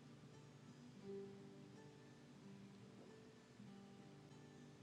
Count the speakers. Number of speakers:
0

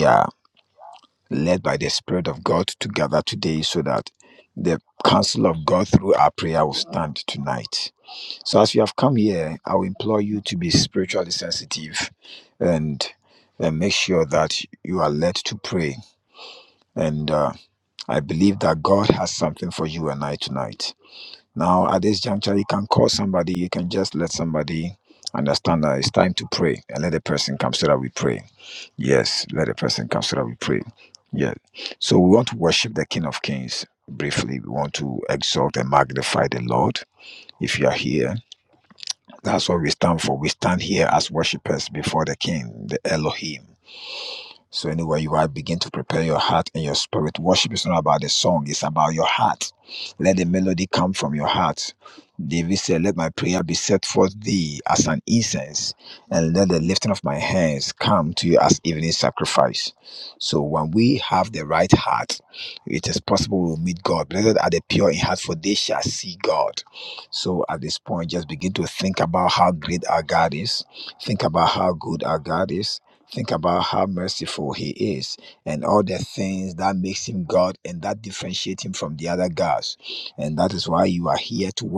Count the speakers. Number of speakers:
1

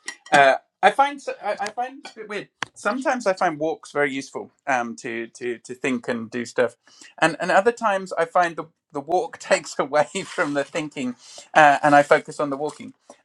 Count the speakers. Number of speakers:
1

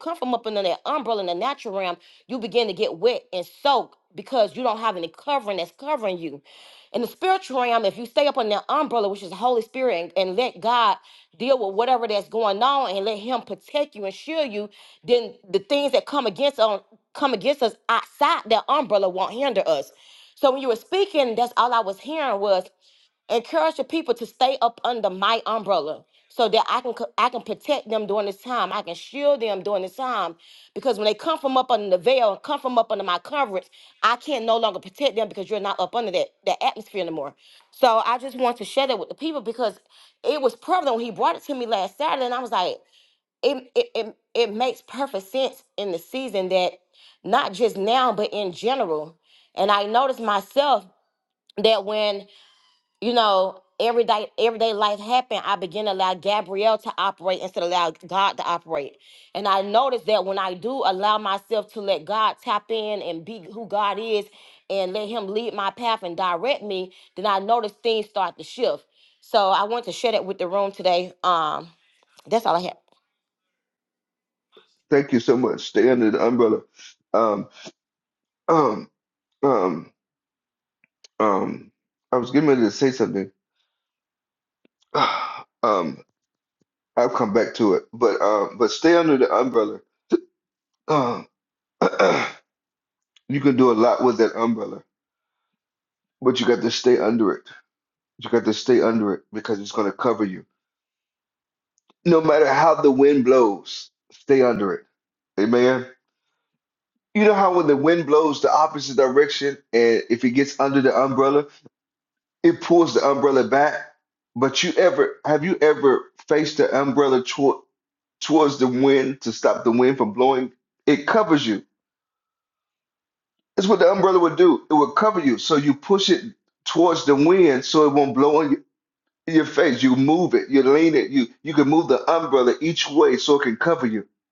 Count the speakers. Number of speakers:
2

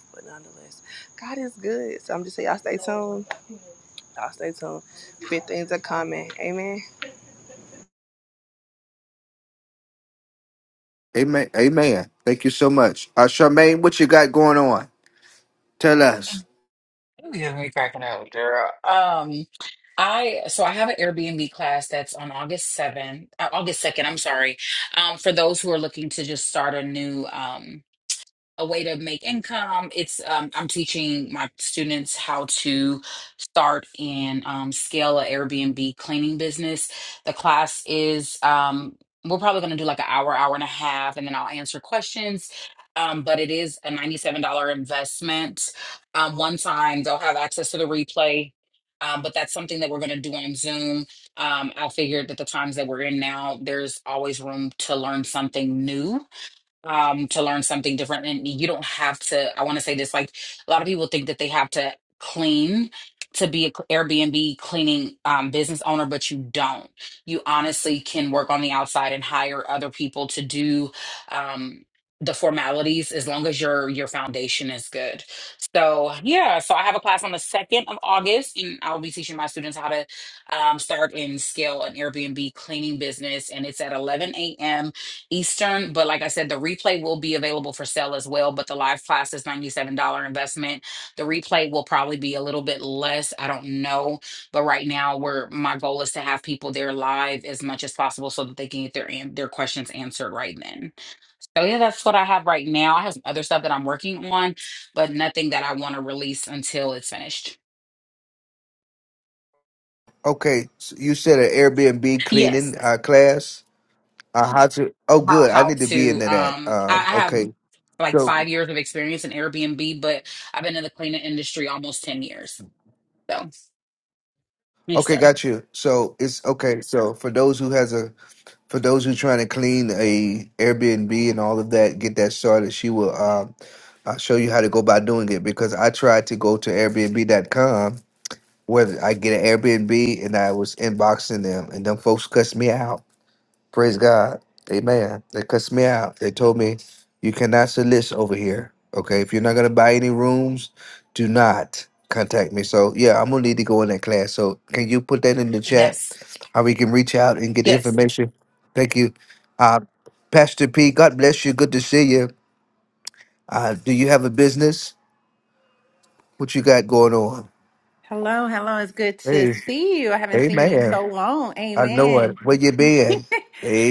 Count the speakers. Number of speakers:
4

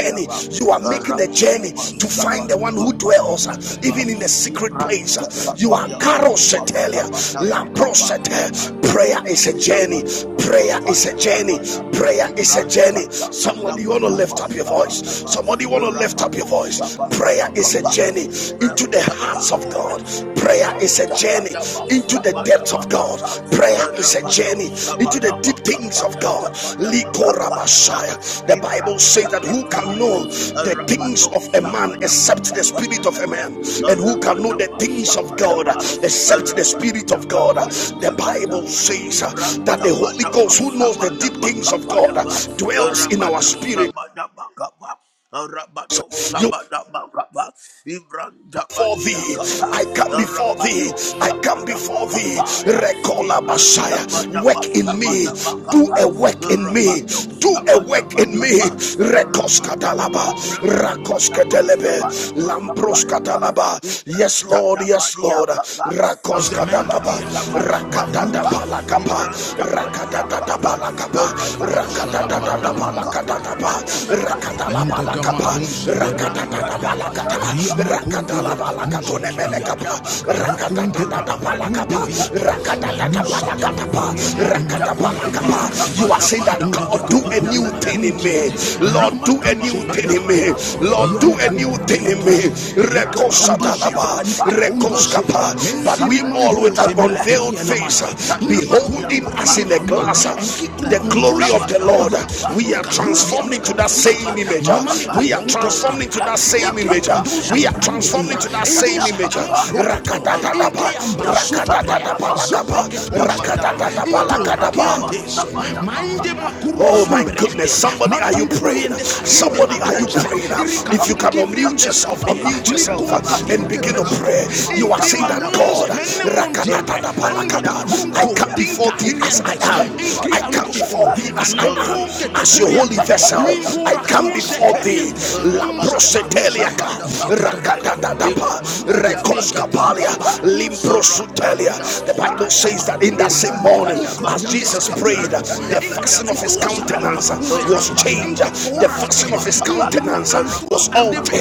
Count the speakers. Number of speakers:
2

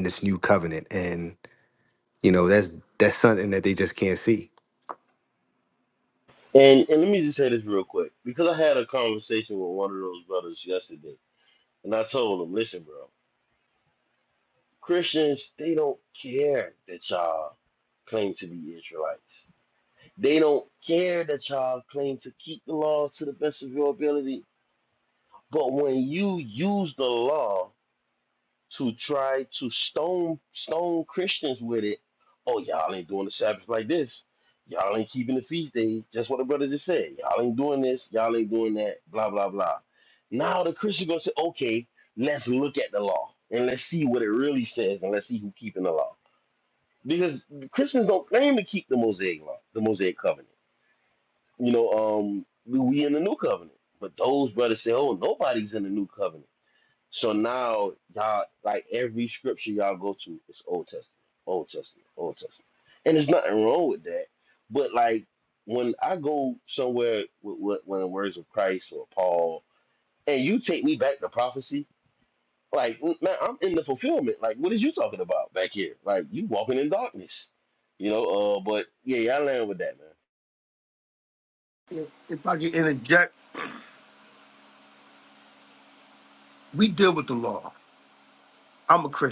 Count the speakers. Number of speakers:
3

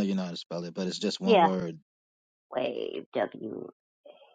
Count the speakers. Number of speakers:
2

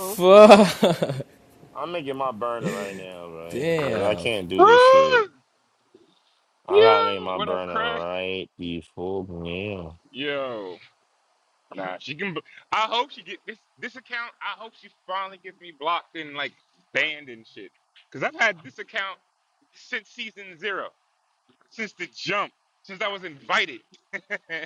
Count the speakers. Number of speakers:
3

